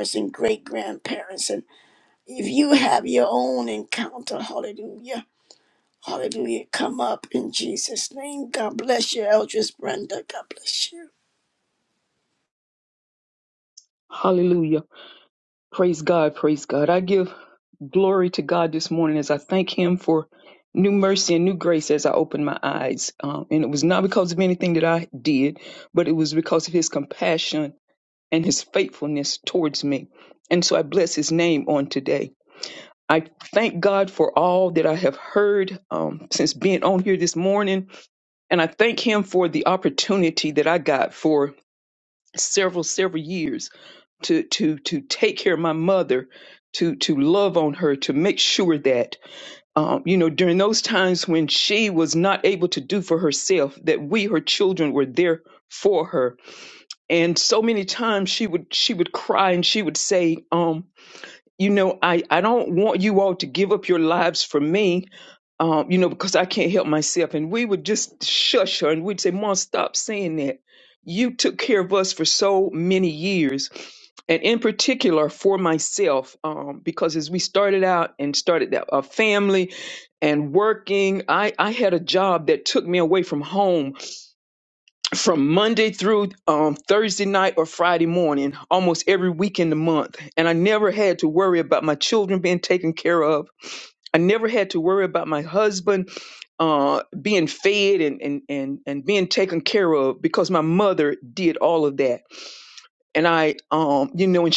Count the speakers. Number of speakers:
two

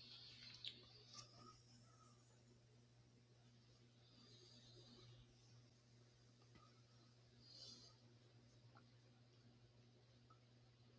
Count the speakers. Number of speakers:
zero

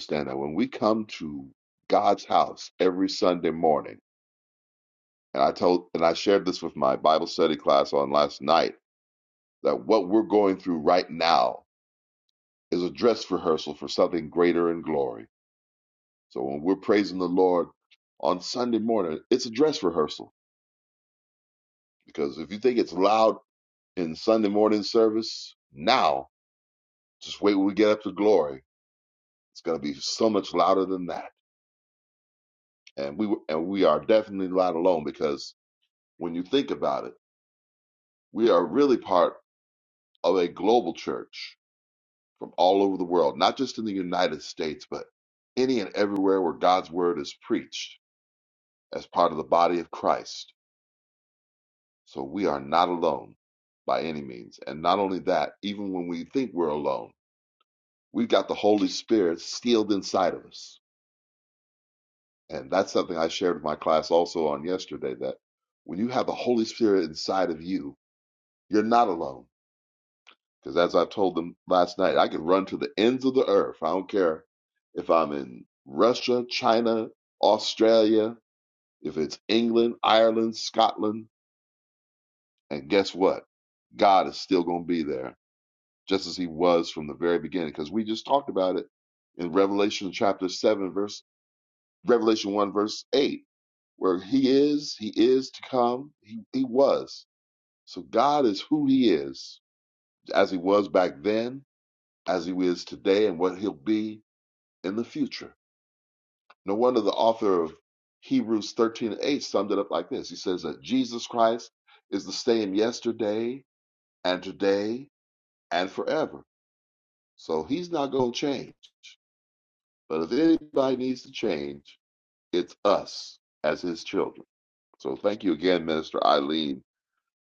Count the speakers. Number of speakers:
one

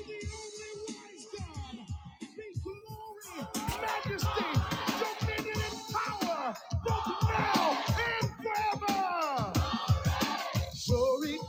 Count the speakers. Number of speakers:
one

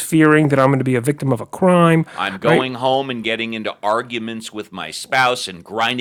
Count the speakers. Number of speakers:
two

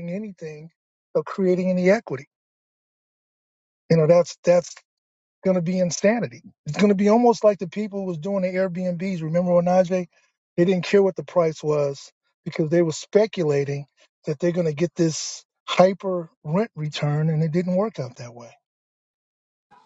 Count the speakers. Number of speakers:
one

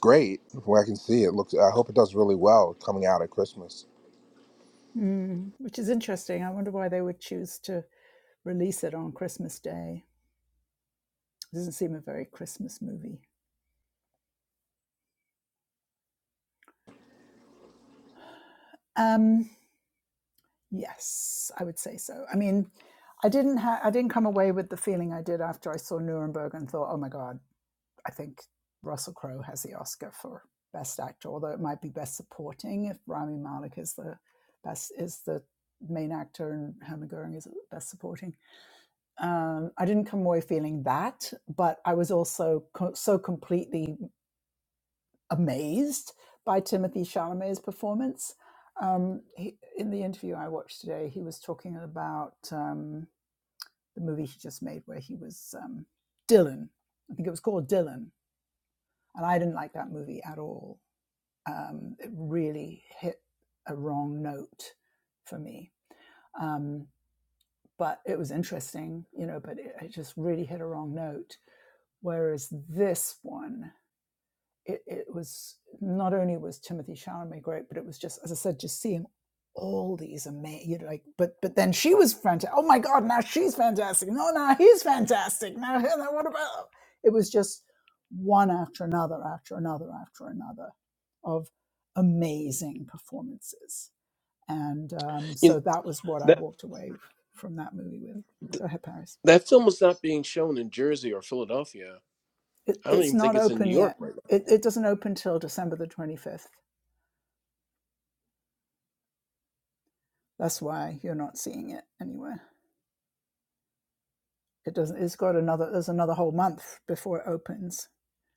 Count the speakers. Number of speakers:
three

